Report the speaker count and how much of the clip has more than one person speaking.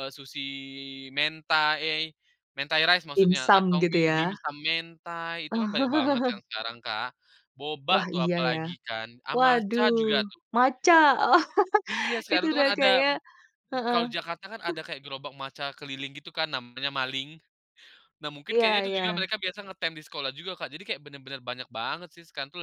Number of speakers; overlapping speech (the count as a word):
two, about 19%